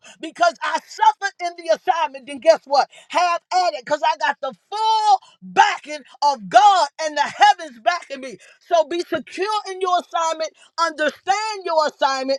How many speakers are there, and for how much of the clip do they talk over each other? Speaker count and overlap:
one, no overlap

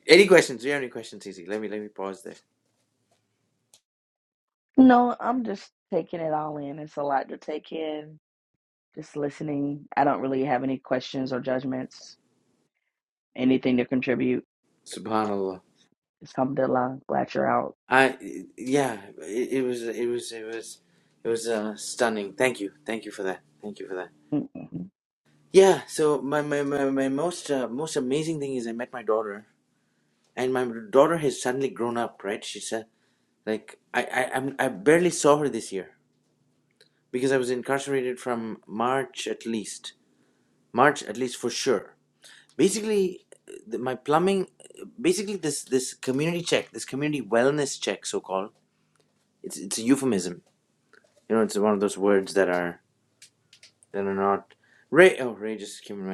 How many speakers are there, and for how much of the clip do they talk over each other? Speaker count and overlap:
two, no overlap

